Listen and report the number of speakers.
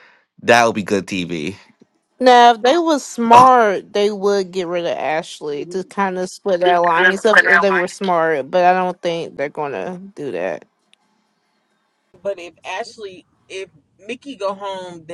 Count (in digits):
3